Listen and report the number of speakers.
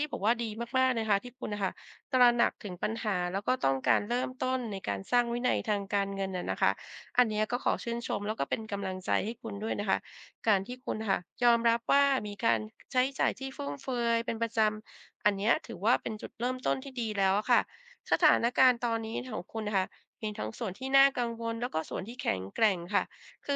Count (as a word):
one